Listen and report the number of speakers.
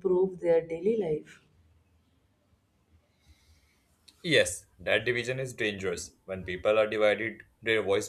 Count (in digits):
2